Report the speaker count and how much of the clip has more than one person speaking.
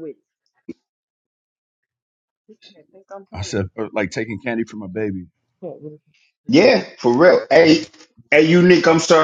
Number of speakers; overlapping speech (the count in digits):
3, about 5%